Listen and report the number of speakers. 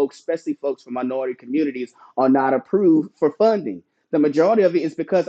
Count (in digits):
1